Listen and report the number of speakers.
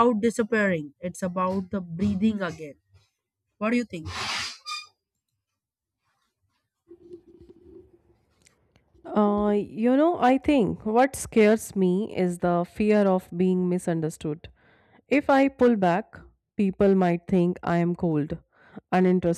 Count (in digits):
2